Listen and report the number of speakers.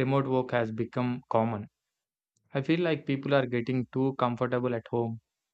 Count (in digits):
1